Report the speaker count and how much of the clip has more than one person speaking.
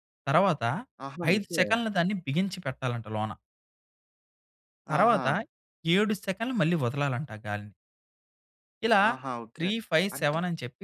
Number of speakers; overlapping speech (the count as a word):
two, about 12%